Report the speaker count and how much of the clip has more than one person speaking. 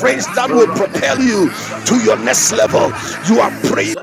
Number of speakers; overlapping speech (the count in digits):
2, about 78%